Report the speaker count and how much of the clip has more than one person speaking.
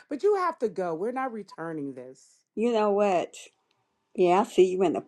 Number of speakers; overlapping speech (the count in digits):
2, no overlap